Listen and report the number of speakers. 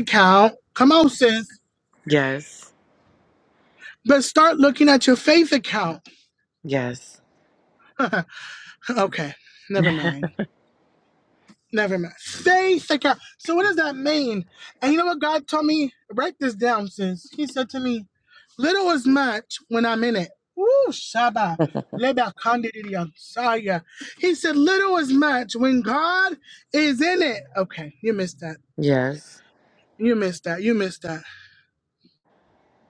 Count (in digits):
2